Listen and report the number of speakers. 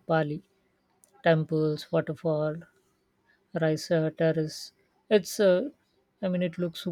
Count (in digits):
1